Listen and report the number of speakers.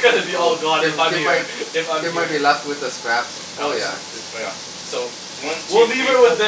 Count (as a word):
three